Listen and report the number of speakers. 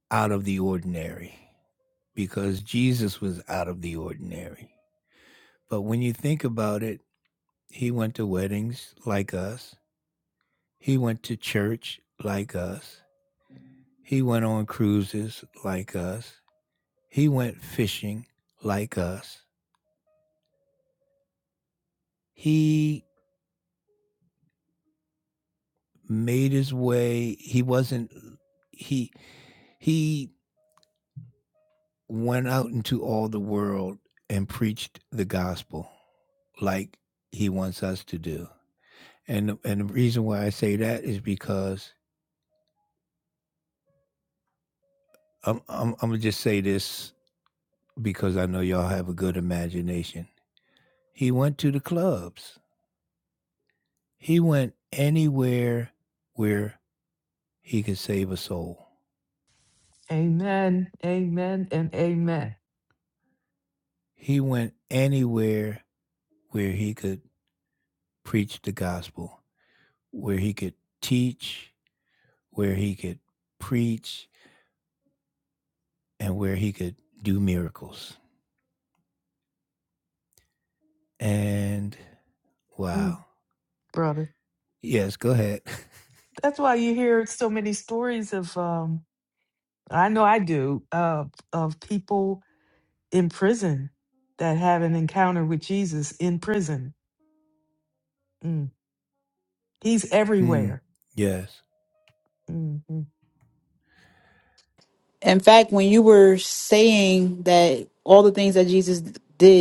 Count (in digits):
3